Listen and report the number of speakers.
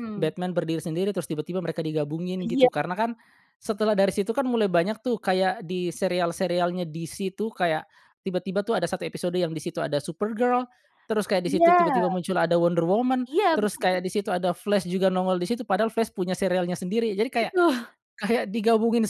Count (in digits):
2